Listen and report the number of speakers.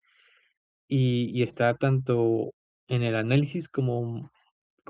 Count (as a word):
one